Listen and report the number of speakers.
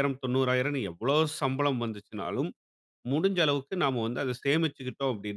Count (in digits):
1